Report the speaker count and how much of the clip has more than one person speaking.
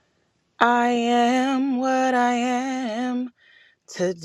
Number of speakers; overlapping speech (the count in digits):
1, no overlap